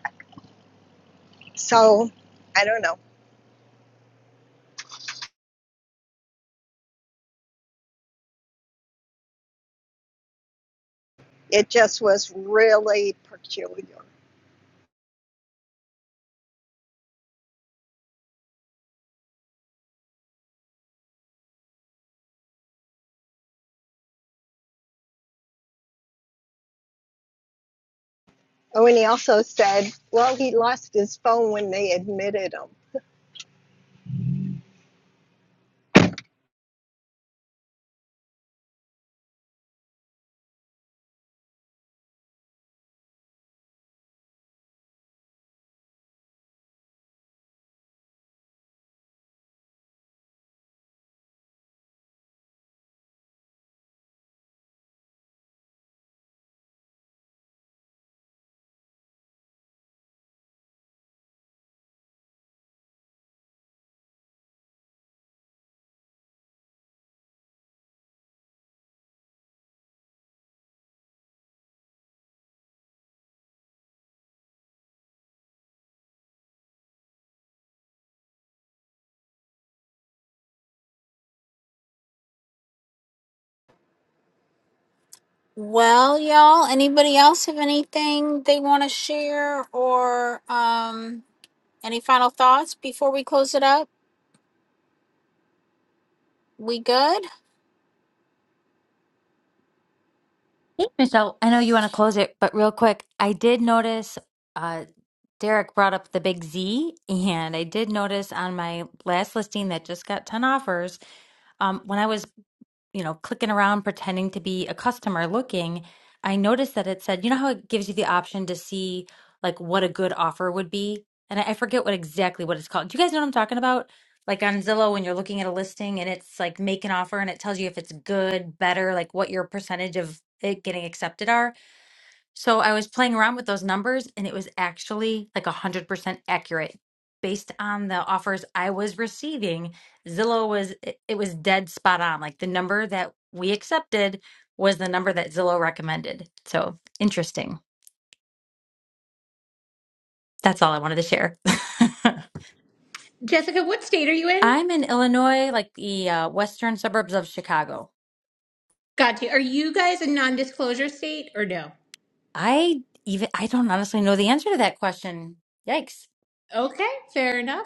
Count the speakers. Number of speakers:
4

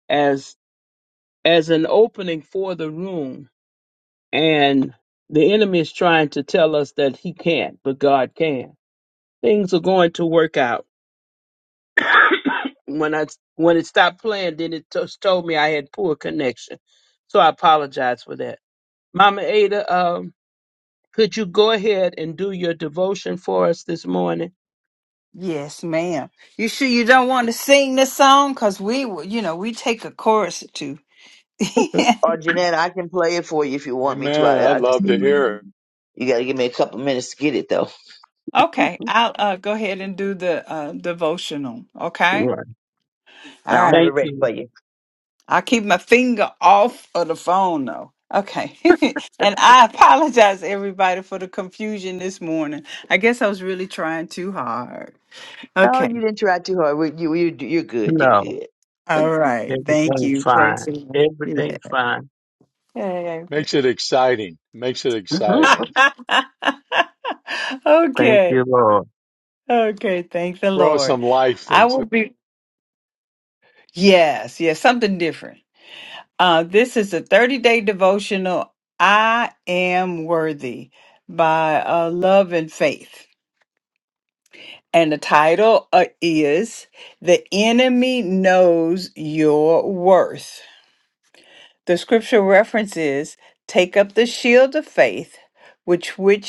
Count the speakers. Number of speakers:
4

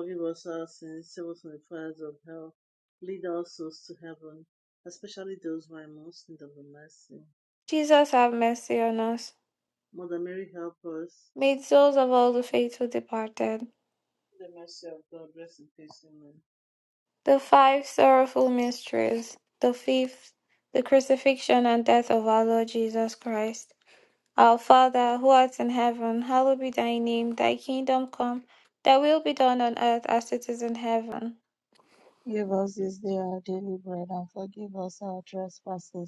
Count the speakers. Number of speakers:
3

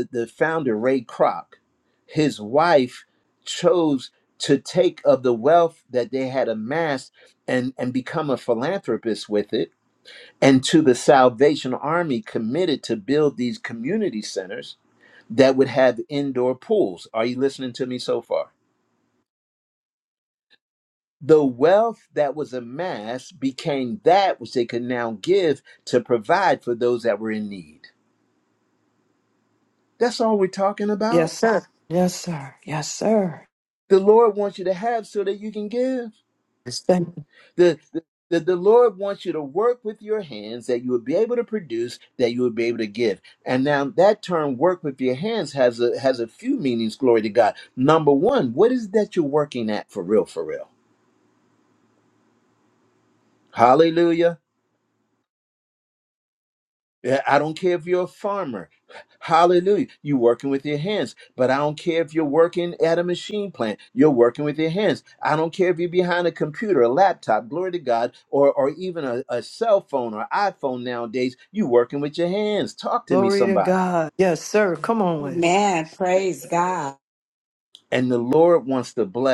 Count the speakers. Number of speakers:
3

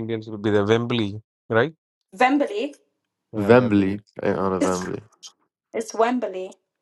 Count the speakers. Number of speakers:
3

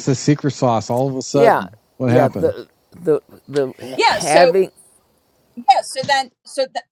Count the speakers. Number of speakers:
3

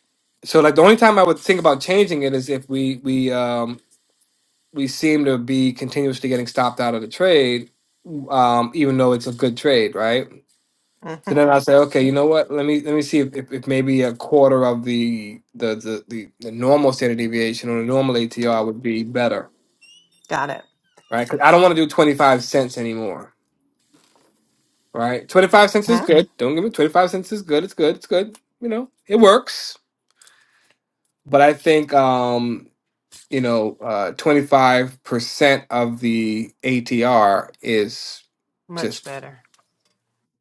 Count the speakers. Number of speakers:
2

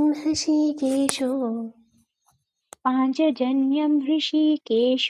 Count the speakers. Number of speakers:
2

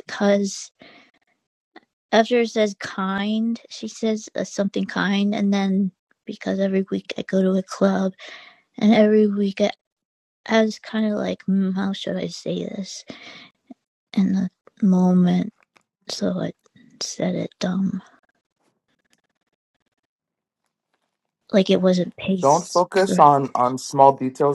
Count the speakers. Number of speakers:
2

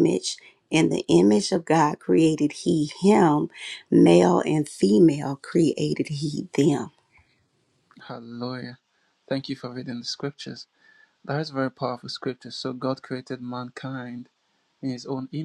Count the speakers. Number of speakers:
2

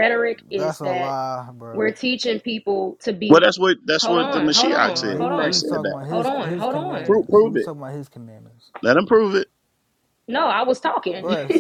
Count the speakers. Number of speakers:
3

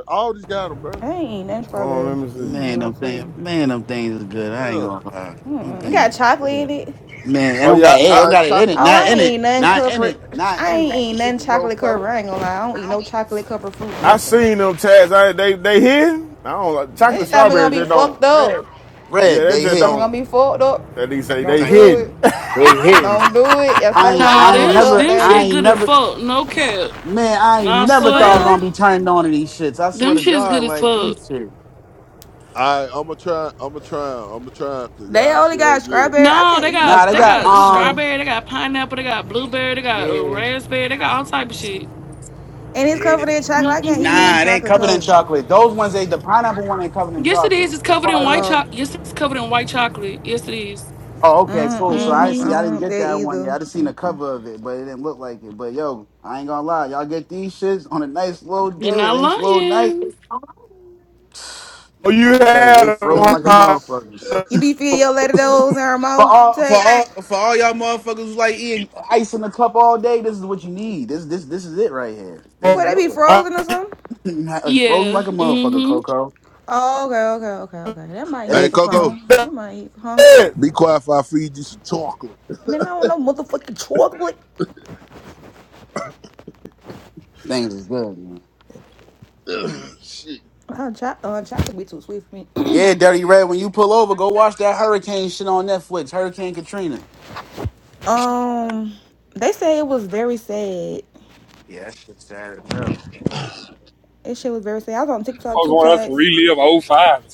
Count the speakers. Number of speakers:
6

